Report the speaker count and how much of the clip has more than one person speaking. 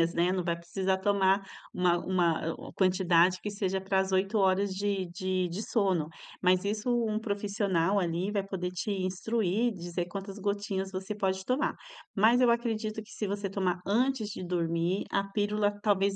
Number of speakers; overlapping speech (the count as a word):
one, no overlap